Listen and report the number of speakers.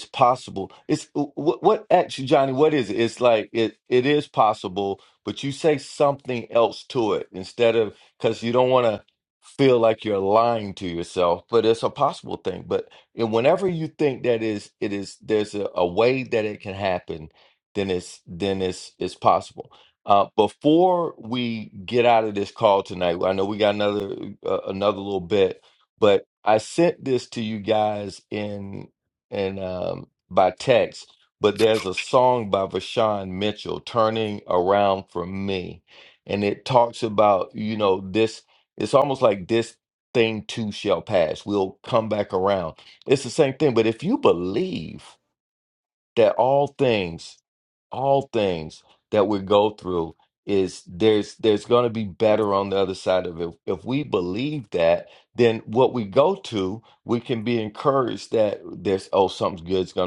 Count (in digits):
1